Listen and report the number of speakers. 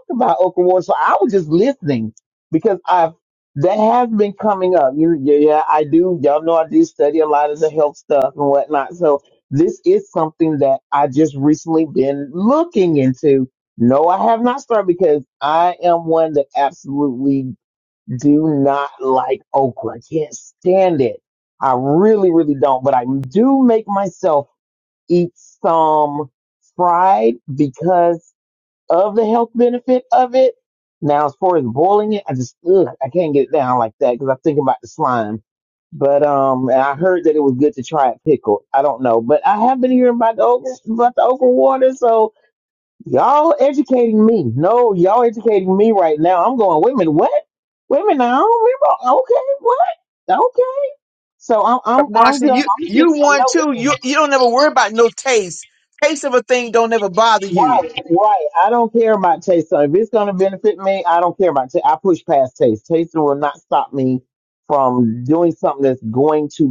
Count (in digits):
2